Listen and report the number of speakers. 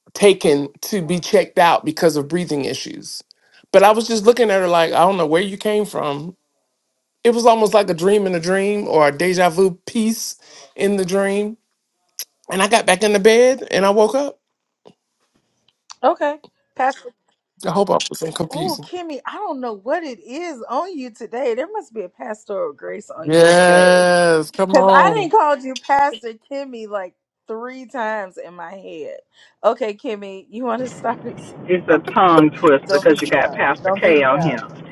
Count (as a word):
three